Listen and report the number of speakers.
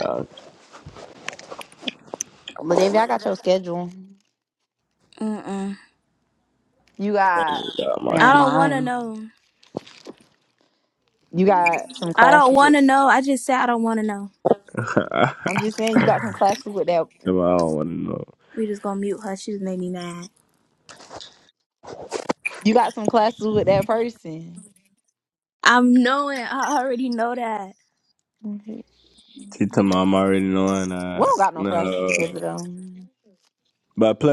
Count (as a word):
three